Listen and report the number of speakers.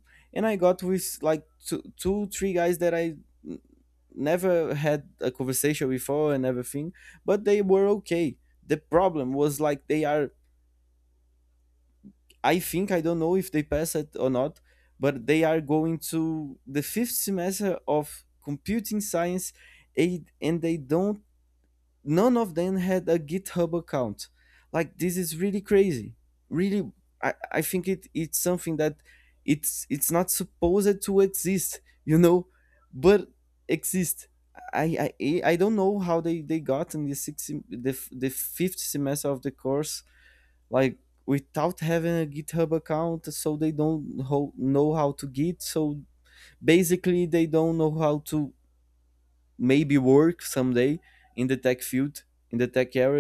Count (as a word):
one